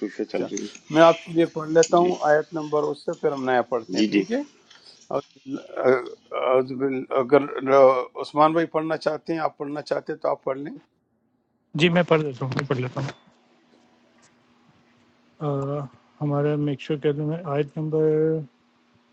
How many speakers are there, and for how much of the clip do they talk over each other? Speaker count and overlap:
3, about 3%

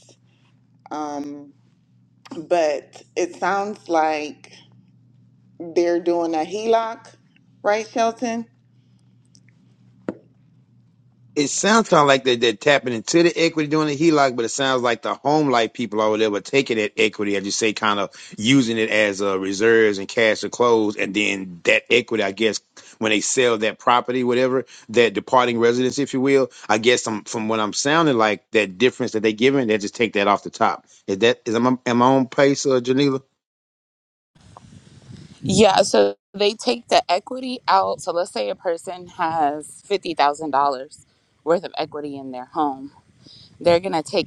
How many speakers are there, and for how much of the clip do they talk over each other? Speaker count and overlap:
3, no overlap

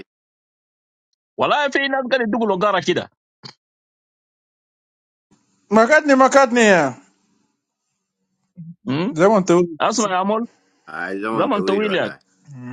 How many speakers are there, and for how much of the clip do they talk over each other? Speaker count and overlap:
3, about 6%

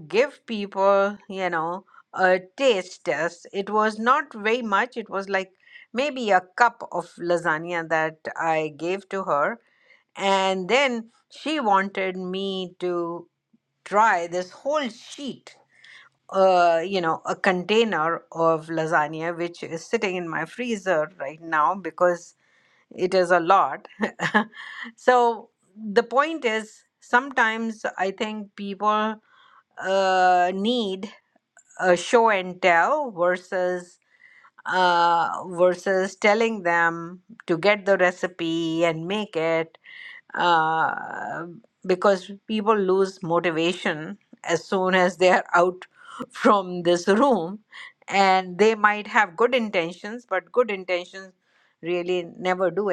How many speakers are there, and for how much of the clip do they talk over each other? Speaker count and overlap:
1, no overlap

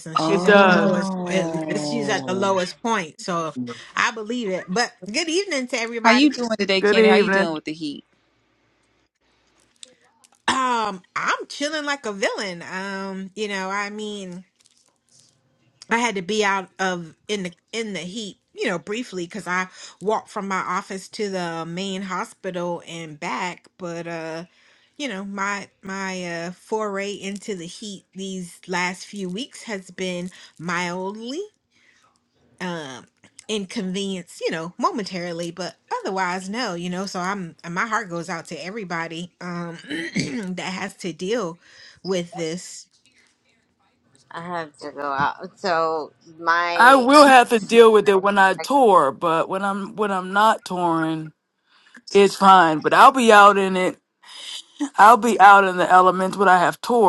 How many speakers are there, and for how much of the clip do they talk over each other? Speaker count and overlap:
4, about 4%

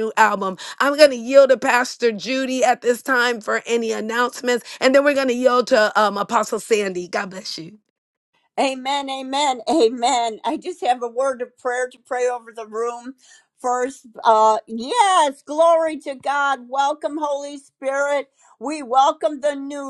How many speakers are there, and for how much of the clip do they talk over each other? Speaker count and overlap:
2, no overlap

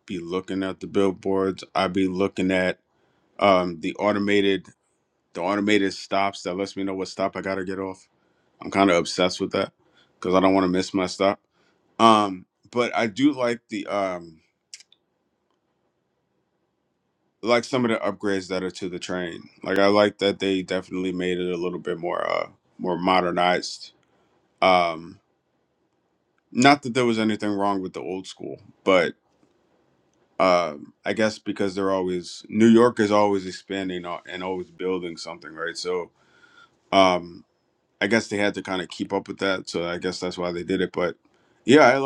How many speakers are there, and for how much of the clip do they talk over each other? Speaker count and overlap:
1, no overlap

